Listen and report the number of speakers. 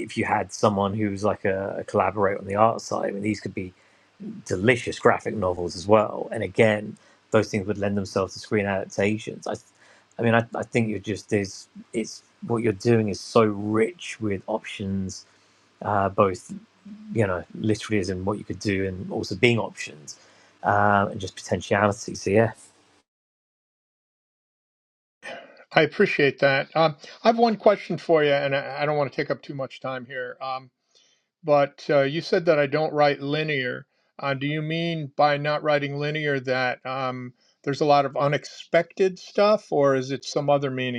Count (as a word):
two